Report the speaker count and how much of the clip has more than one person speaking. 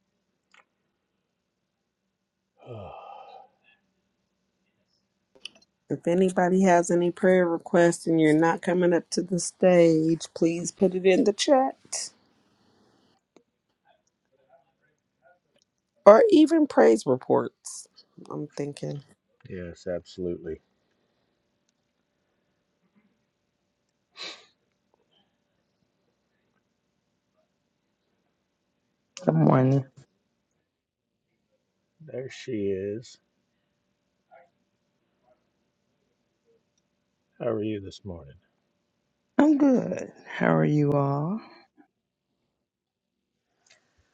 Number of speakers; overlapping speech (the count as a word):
three, no overlap